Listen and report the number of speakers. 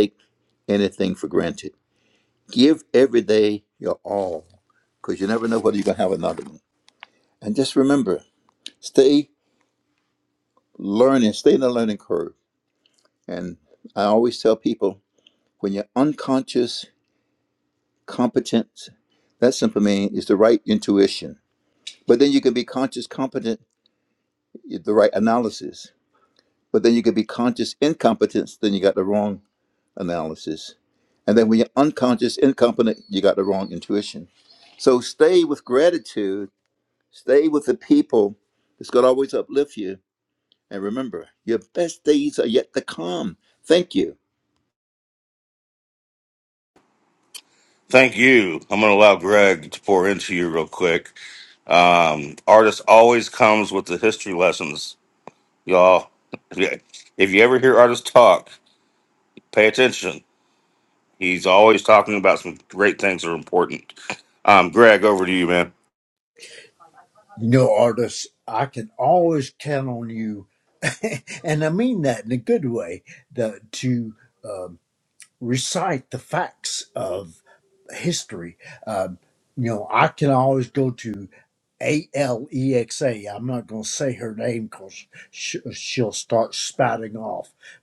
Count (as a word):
three